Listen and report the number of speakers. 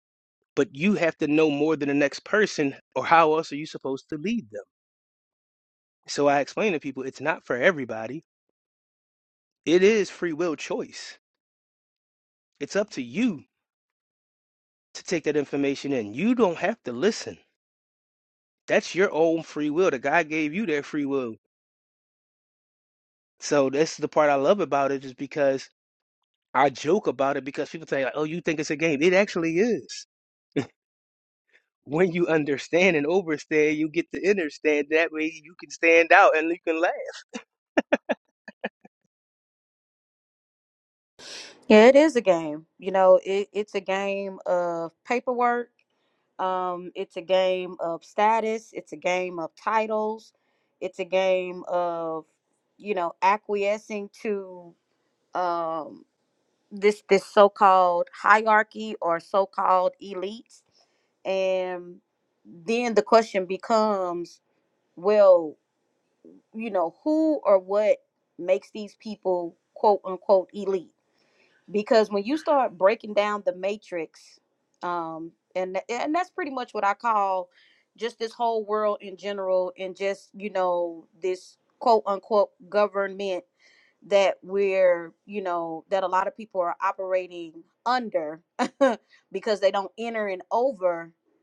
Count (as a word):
two